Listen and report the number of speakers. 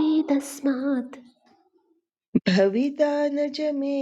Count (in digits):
2